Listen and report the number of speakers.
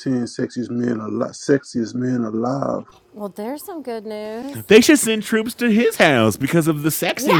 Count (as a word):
three